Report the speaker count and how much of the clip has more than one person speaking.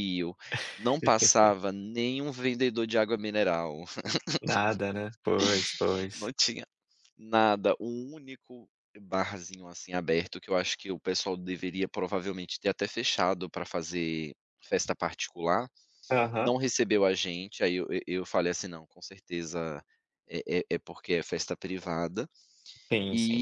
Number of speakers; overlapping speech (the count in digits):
2, about 2%